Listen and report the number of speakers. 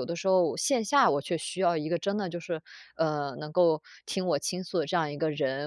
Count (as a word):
one